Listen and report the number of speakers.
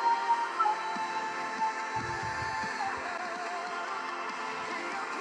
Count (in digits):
0